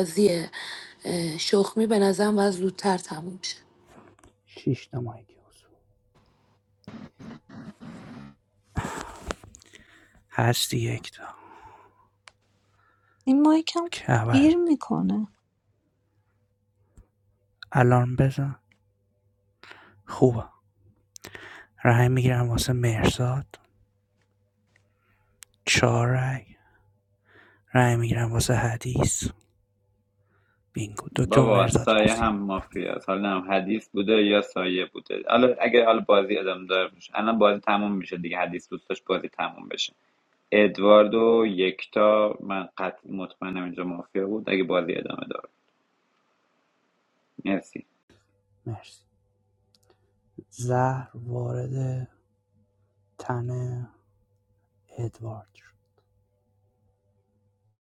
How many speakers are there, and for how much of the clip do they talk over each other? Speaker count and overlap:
four, about 2%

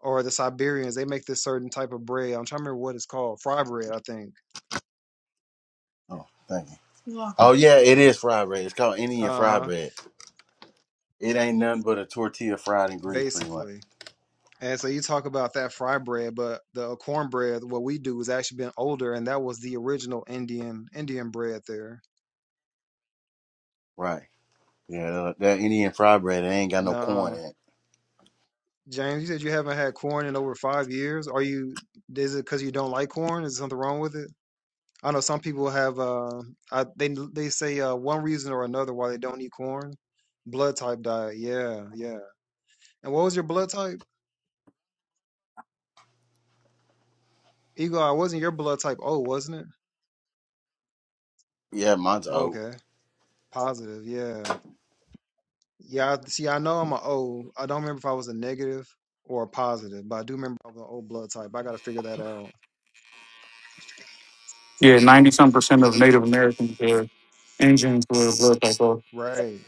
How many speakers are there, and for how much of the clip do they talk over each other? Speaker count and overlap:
three, about 3%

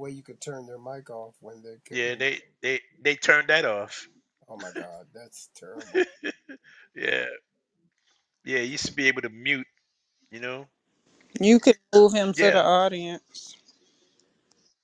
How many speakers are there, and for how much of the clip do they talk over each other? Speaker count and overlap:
three, about 4%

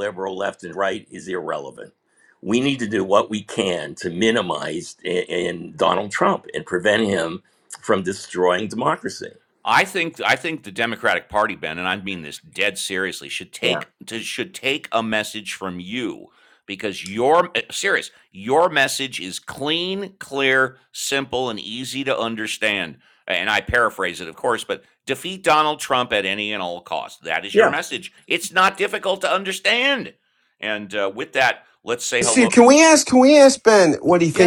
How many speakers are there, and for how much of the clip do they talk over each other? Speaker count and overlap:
three, about 3%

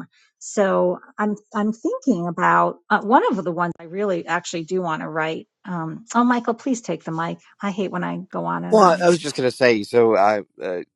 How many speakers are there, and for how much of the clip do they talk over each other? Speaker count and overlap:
two, about 3%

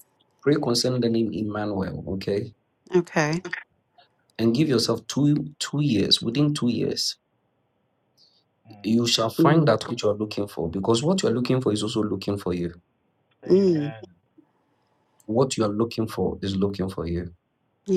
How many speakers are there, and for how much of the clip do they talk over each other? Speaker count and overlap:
two, about 2%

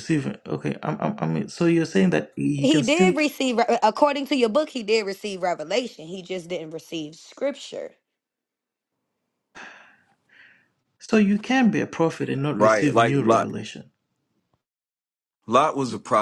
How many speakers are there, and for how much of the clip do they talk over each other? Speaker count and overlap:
three, about 10%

